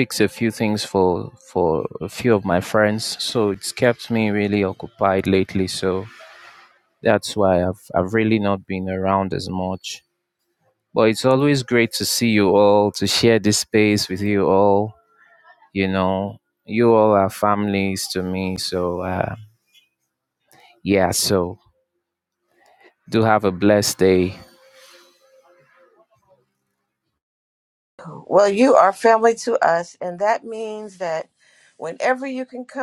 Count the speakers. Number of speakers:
2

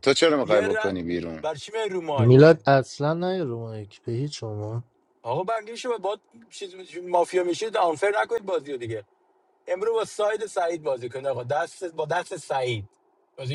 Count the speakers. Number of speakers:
3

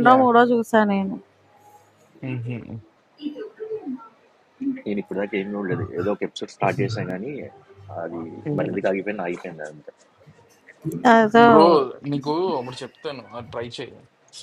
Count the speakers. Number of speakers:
3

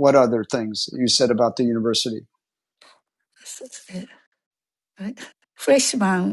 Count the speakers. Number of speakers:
2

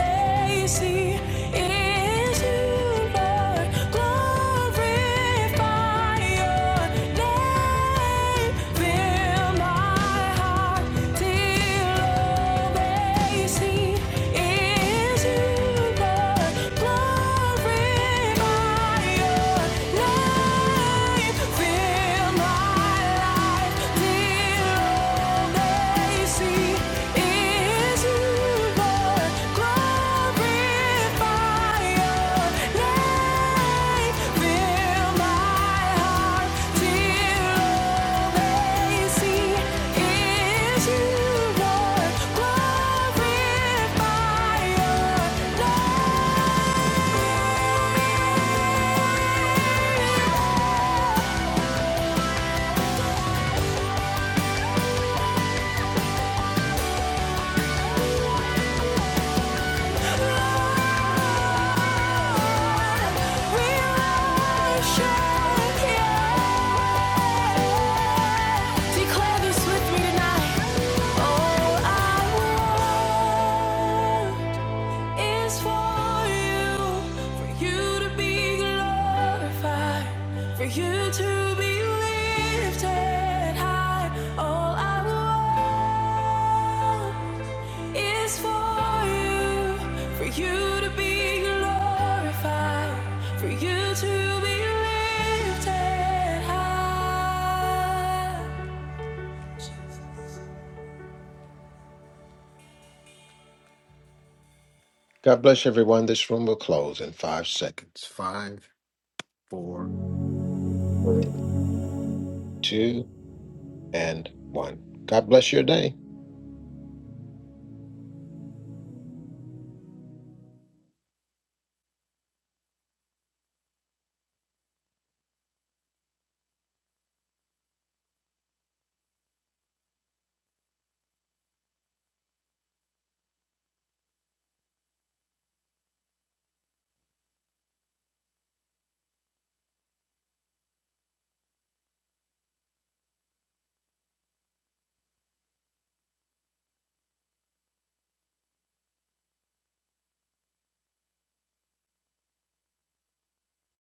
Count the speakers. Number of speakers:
2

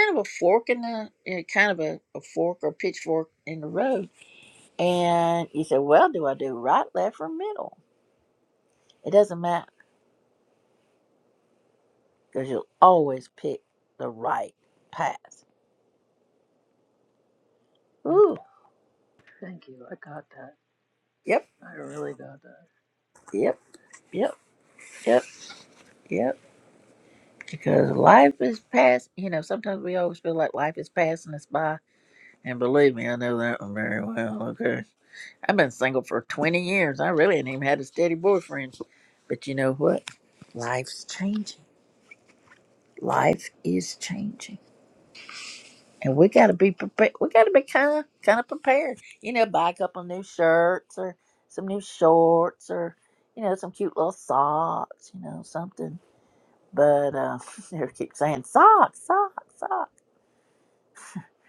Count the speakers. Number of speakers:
2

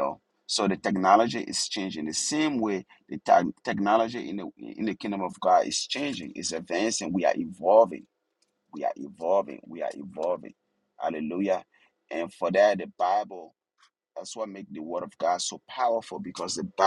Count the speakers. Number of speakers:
1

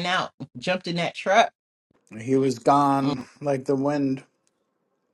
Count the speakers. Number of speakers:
2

